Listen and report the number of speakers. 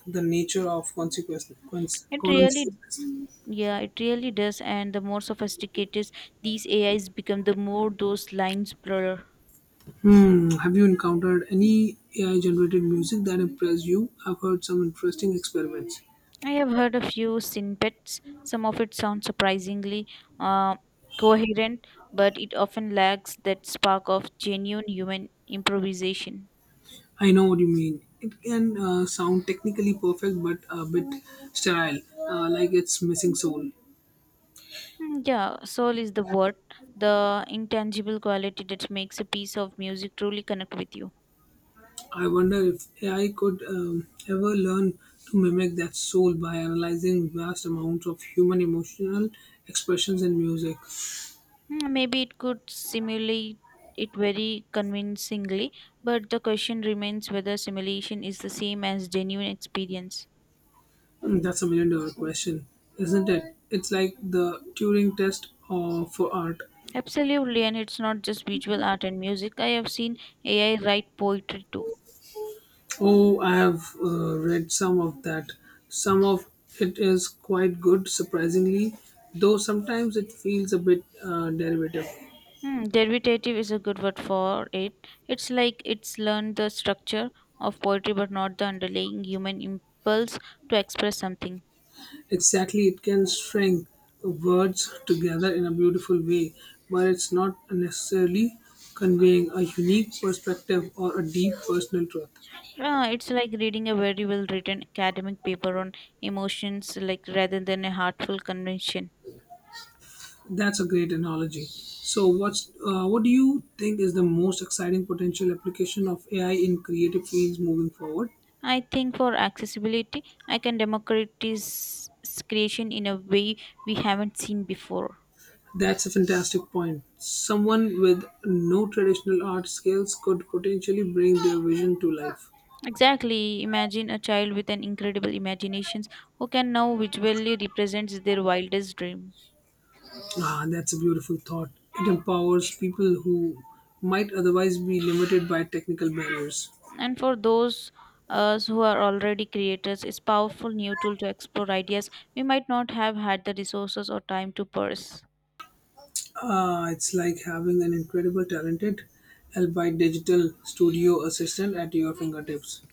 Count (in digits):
2